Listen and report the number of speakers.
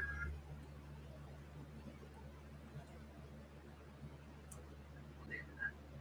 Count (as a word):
zero